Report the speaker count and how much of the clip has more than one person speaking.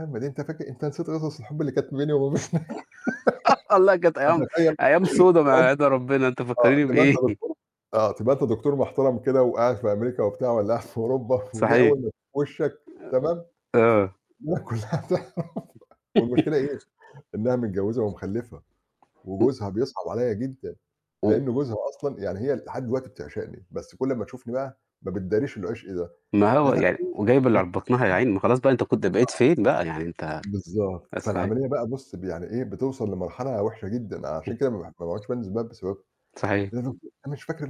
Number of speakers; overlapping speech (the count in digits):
2, about 6%